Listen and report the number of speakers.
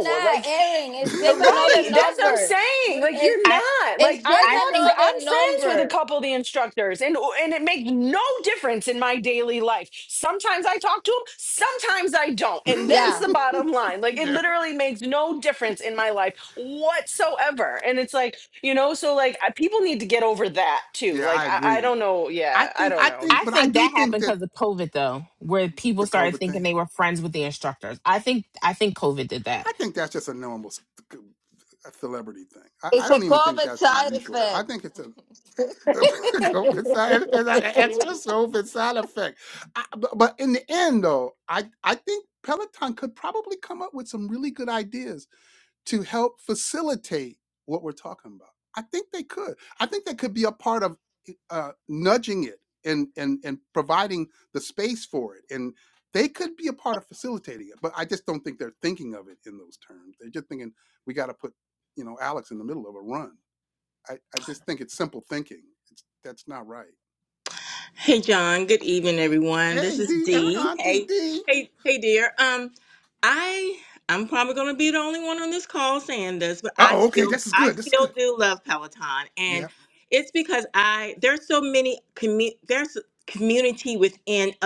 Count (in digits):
5